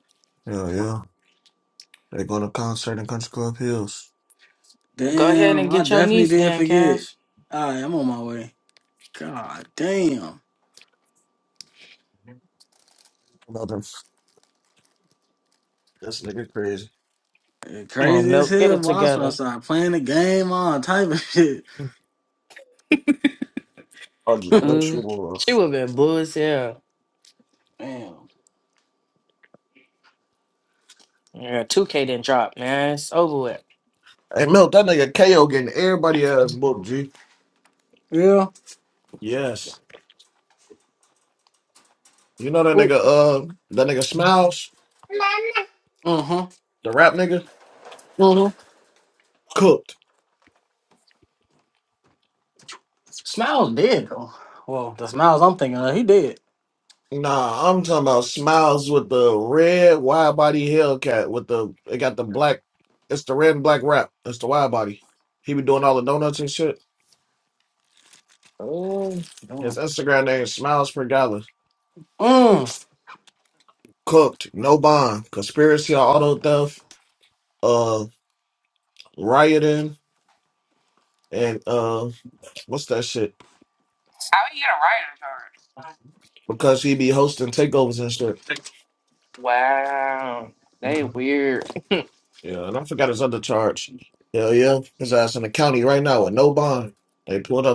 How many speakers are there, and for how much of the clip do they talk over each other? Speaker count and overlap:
3, about 5%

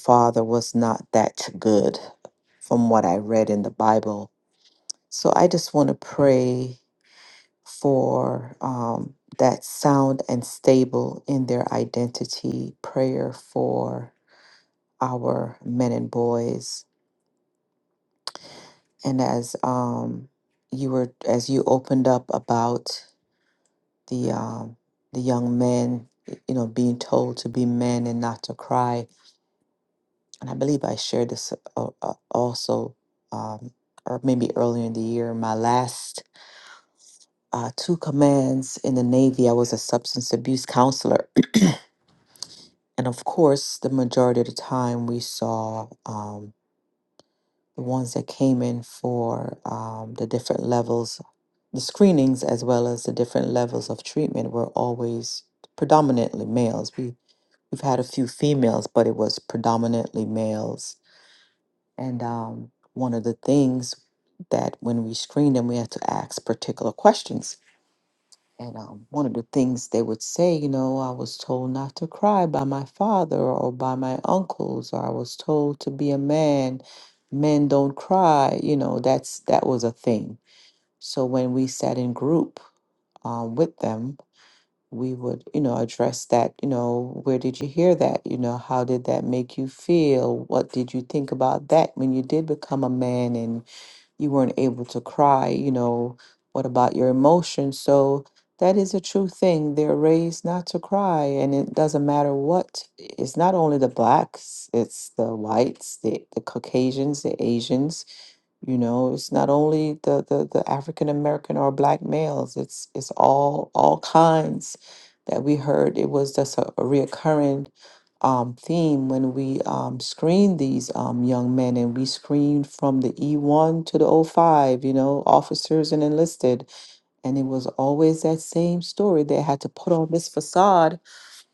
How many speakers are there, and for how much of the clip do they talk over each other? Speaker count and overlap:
1, no overlap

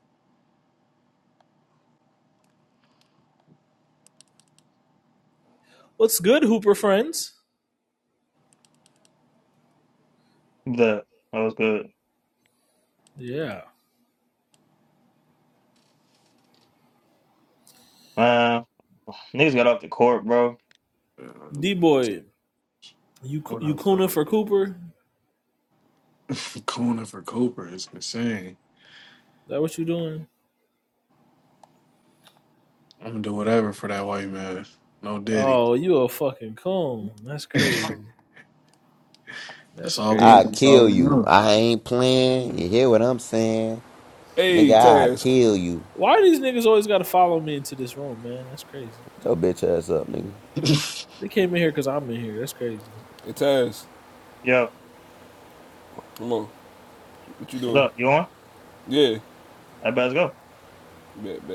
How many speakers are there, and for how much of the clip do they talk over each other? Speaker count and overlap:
5, about 6%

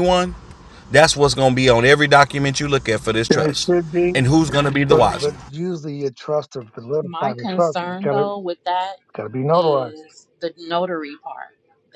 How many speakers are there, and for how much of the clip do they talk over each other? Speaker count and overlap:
3, about 21%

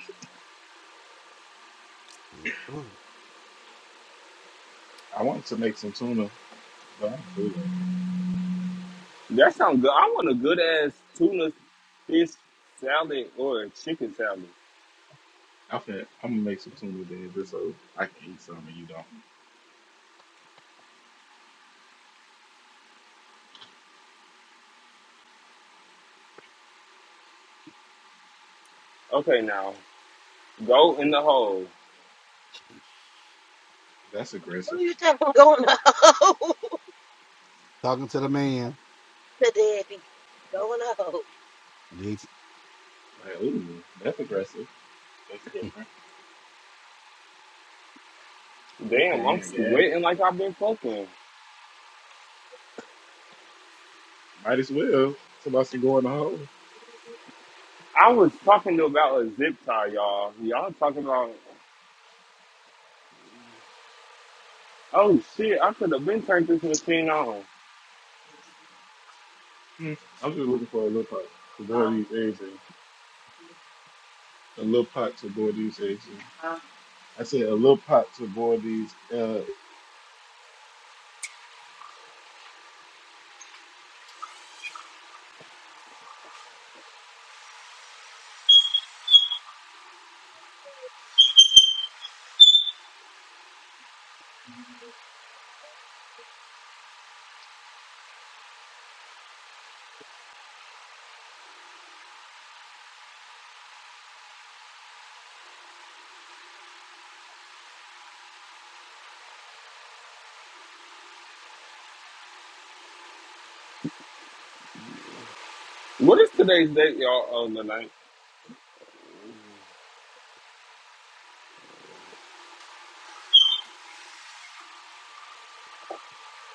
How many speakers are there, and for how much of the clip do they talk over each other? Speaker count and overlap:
4, about 1%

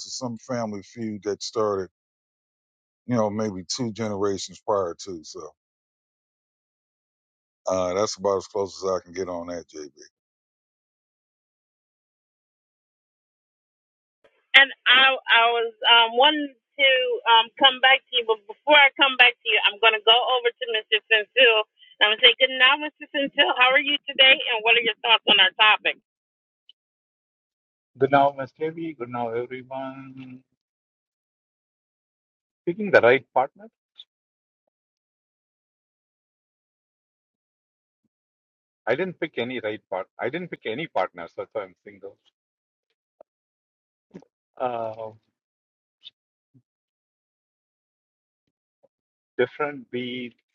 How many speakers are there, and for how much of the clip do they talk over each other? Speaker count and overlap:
3, no overlap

